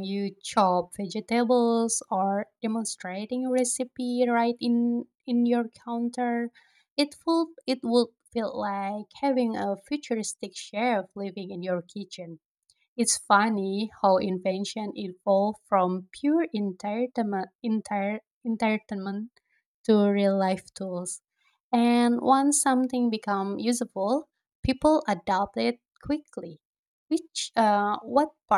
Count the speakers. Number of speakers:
1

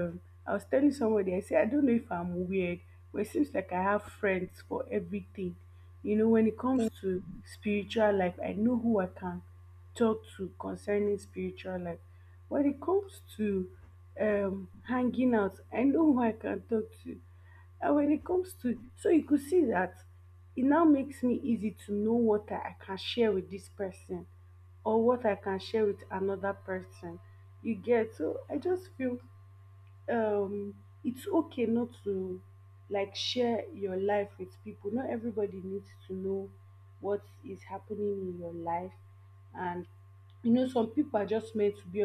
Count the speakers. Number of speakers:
1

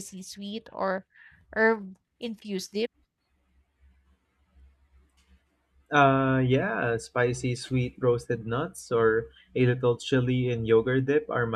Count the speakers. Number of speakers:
2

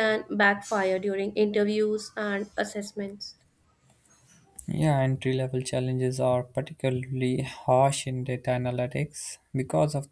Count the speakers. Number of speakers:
2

